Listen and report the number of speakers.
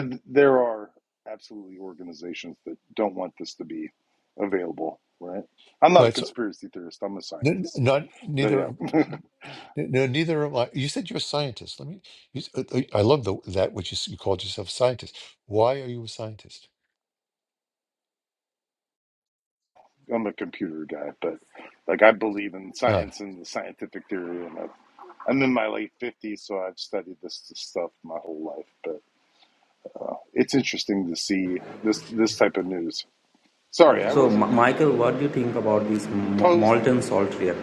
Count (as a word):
three